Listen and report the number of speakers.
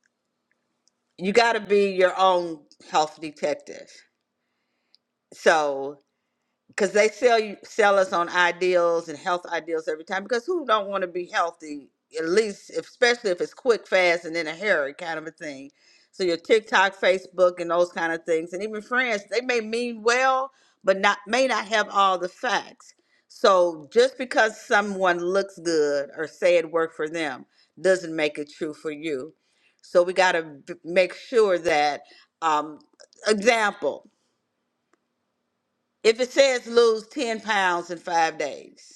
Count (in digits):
1